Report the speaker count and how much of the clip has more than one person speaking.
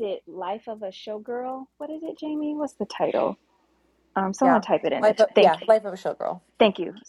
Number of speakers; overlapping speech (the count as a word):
two, about 11%